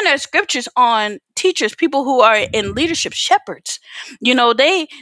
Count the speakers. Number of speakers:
1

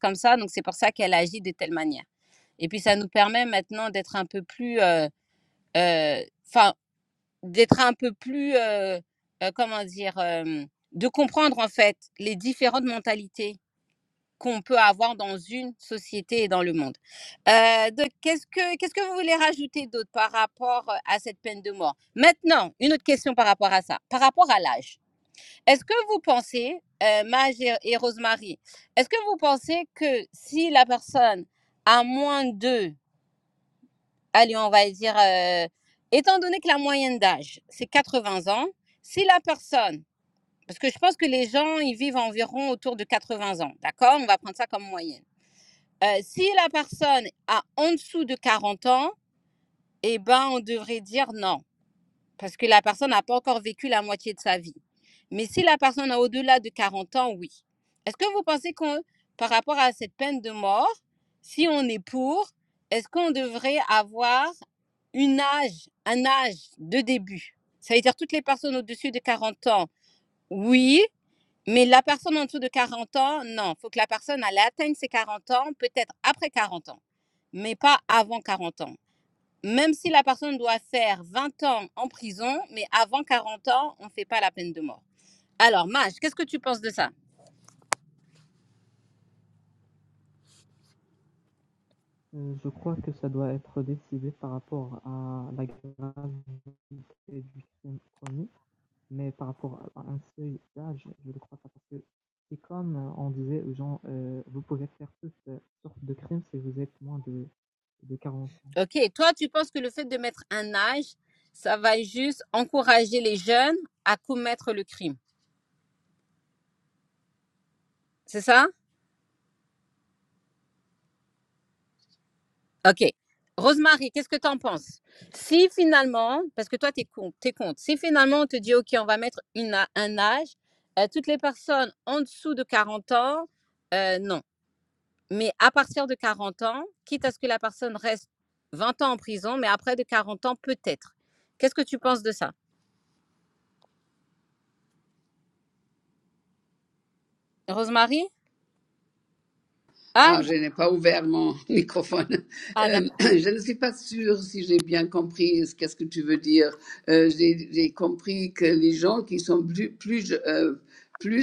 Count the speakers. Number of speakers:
3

